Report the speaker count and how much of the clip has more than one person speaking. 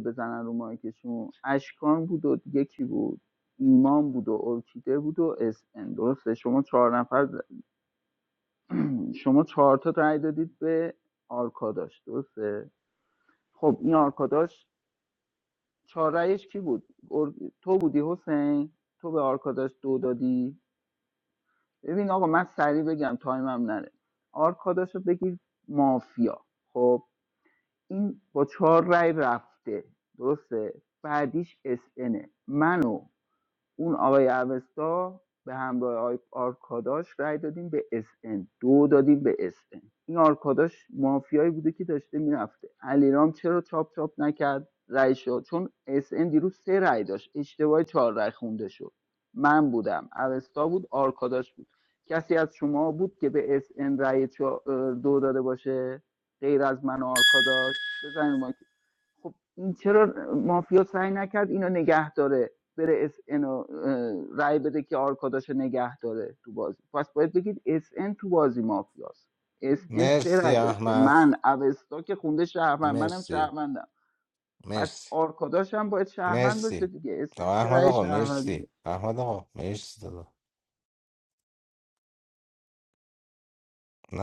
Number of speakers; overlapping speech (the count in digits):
2, about 5%